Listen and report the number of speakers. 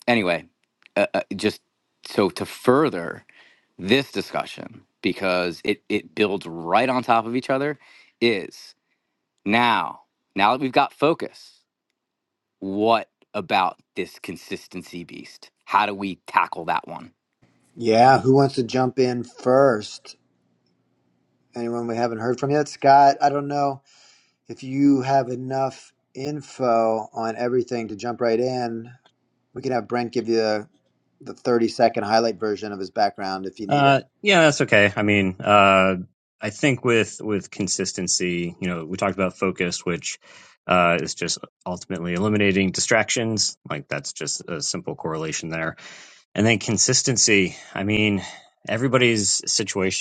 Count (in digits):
3